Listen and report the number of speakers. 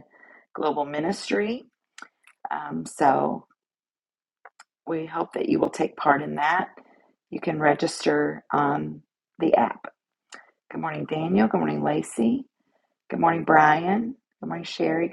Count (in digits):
1